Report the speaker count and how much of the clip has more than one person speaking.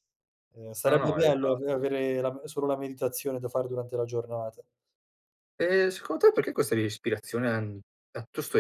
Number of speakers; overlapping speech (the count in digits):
2, about 11%